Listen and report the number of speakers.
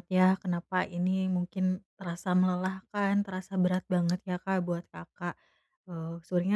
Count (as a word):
one